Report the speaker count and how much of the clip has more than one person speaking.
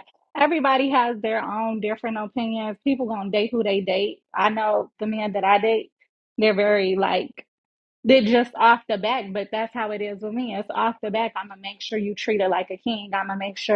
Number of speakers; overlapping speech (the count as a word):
one, no overlap